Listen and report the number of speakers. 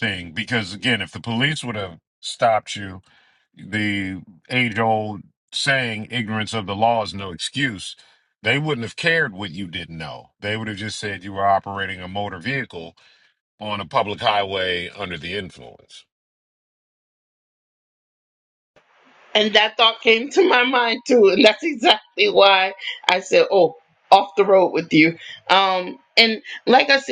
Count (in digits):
2